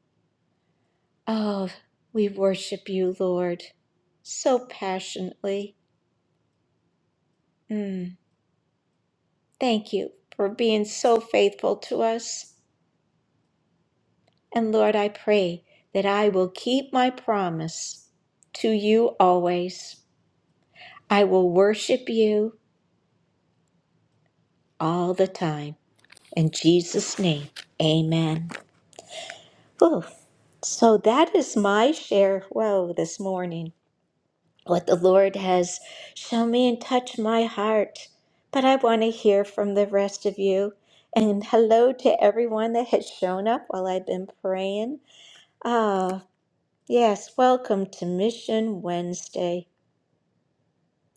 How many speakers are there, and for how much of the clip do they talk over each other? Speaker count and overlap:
1, no overlap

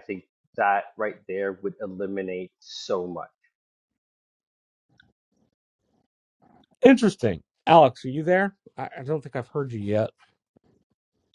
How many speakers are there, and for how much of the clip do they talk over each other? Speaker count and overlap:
2, no overlap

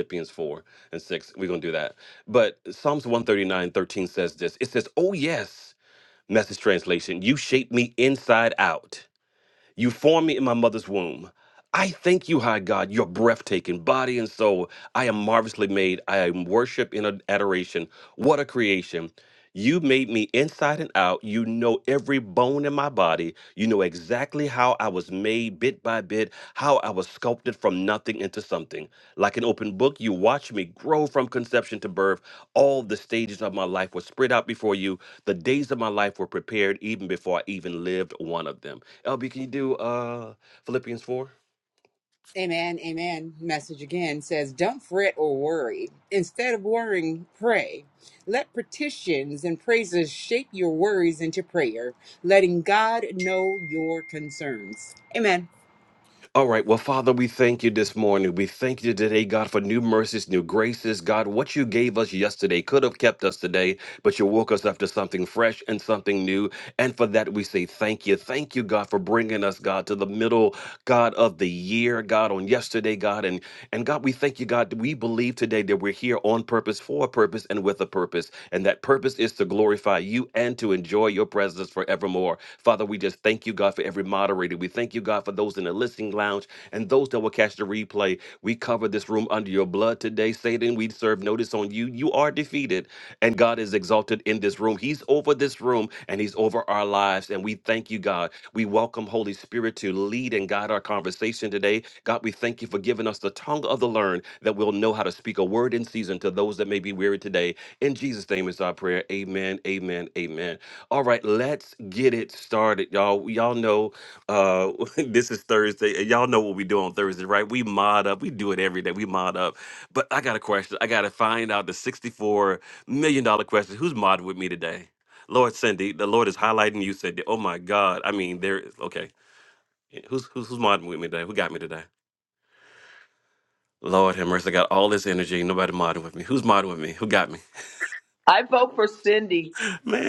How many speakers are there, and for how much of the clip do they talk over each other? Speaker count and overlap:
3, no overlap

